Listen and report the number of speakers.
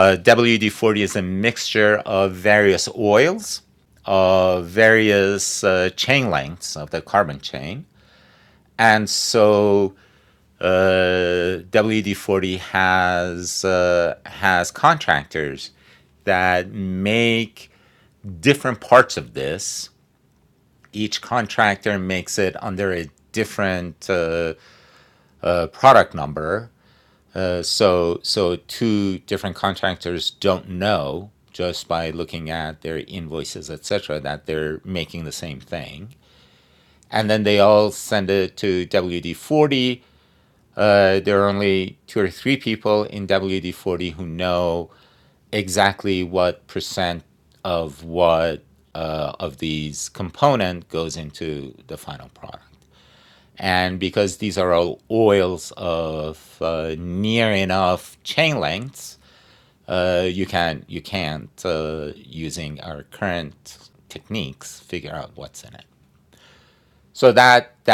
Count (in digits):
1